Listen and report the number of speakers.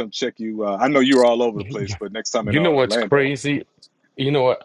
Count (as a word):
two